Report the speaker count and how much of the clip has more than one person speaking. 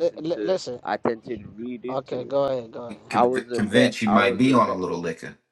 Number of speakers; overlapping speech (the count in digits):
3, about 52%